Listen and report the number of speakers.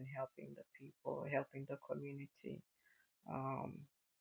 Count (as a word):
one